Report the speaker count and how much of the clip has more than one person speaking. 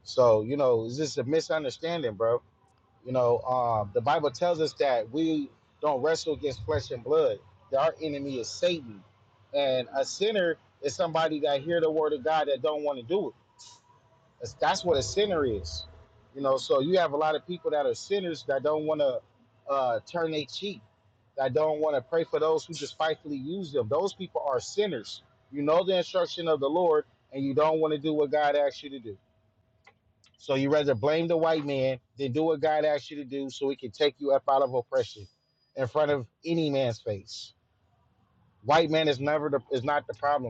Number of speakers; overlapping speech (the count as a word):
one, no overlap